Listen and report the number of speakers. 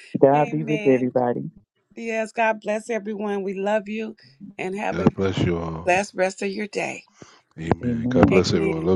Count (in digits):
3